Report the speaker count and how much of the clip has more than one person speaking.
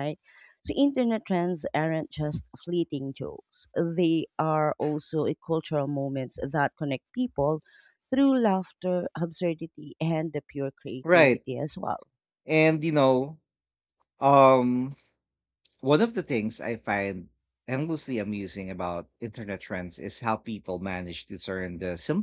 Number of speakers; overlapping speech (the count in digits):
2, about 2%